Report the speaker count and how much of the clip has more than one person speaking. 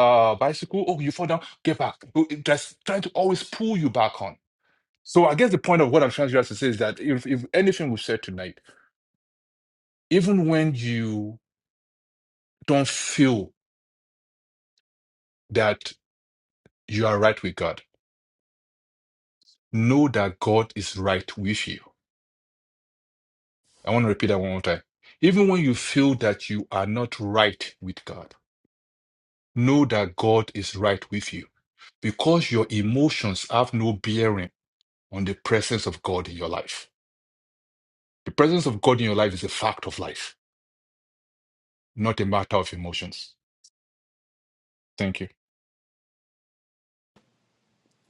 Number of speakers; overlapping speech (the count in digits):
1, no overlap